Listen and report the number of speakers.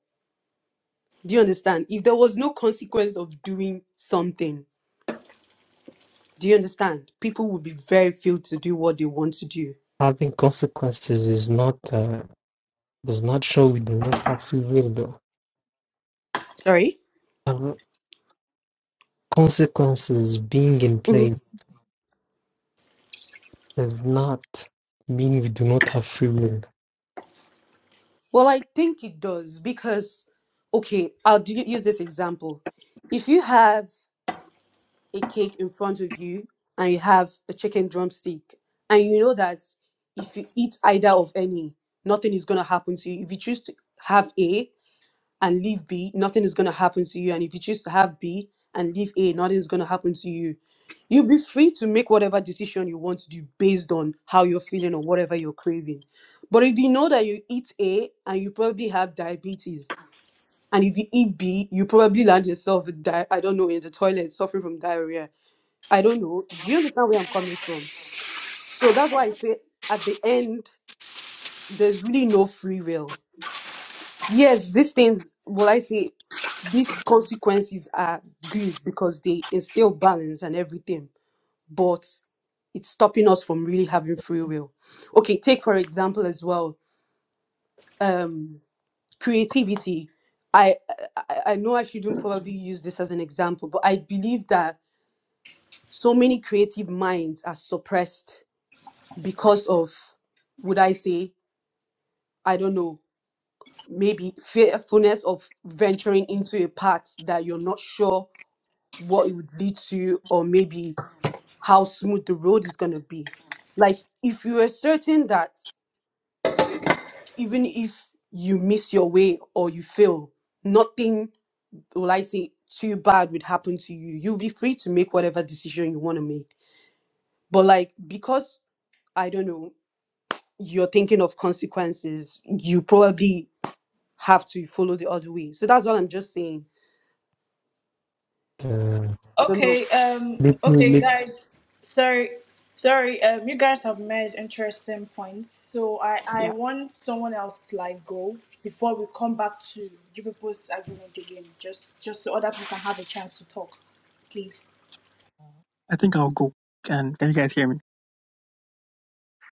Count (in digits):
4